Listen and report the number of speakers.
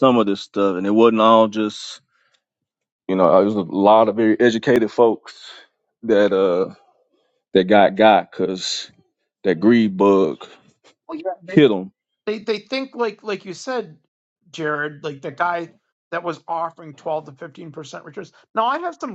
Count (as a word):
two